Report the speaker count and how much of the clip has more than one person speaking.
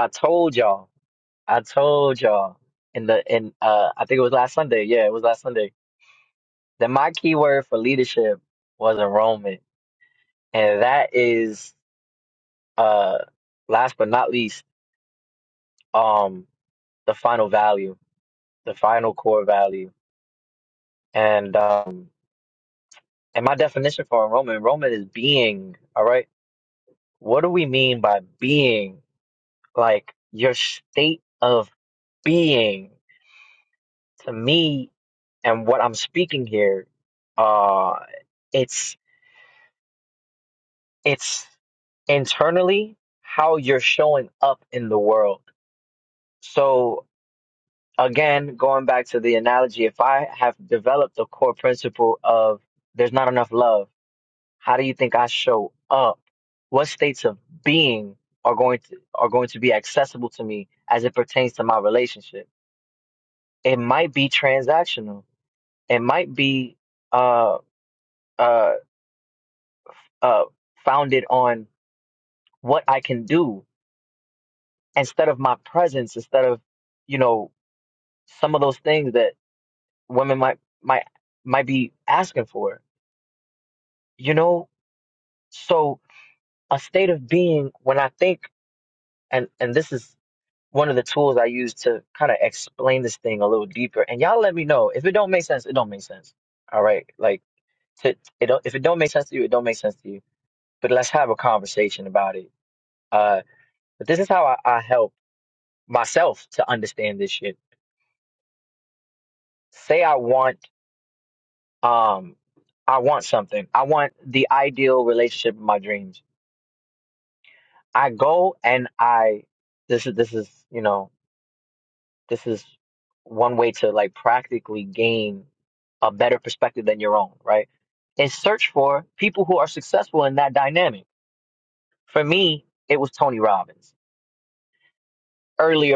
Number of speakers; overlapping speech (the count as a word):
one, no overlap